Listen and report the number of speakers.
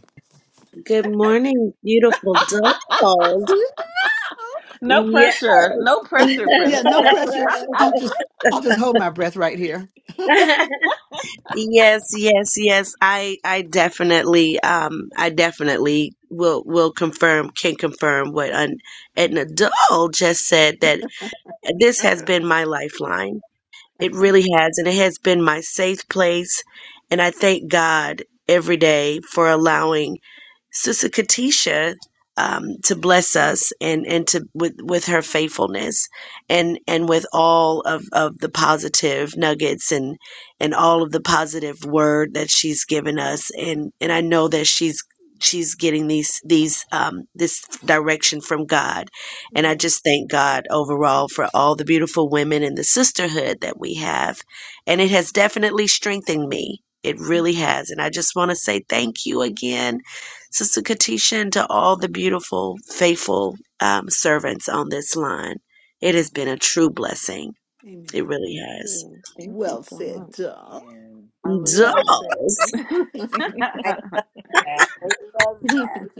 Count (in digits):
4